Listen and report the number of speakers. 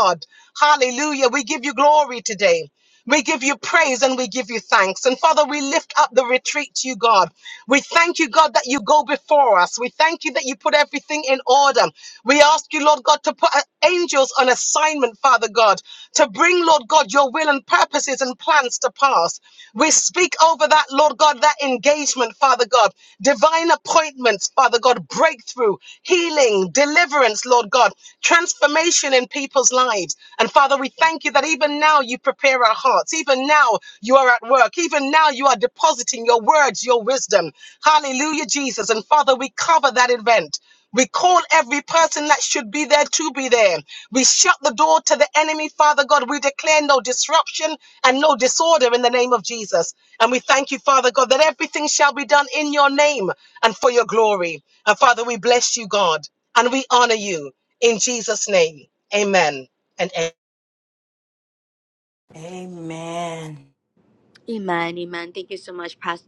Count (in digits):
3